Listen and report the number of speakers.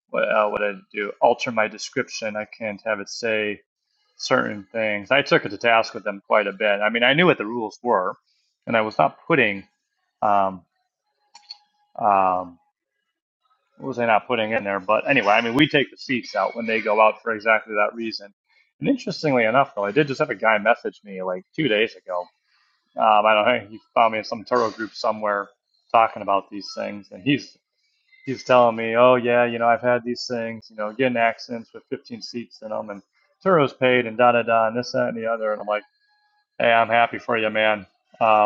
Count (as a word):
one